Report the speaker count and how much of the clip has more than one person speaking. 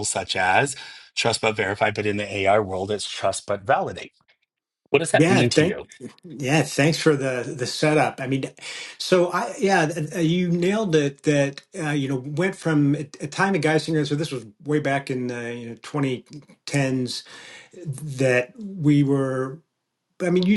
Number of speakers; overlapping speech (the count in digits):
2, about 3%